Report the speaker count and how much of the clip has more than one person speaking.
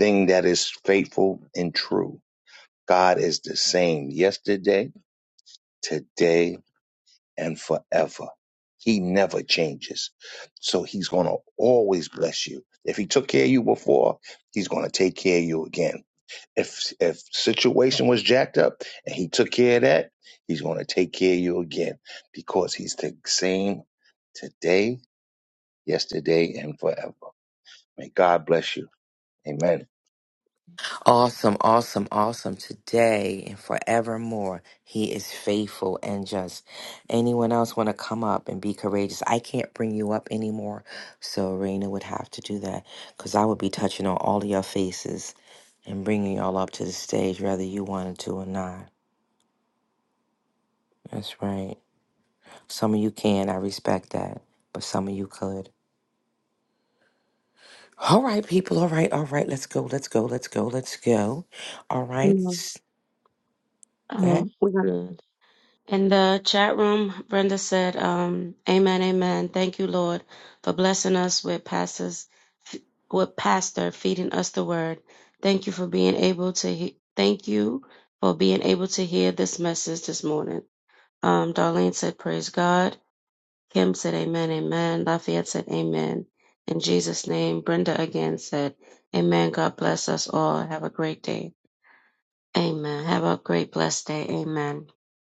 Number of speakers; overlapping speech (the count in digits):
3, under 1%